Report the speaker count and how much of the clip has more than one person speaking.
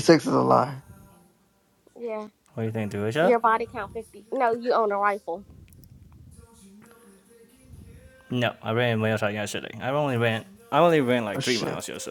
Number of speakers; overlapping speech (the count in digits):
3, about 5%